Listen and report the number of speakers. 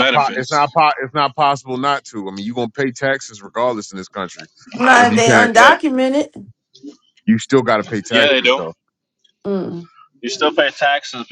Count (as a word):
three